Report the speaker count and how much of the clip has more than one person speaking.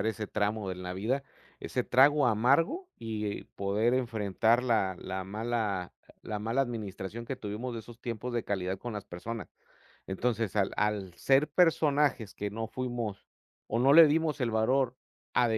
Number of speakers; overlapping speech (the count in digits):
1, no overlap